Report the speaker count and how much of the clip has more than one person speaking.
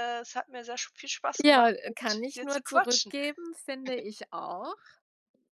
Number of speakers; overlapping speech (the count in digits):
2, about 32%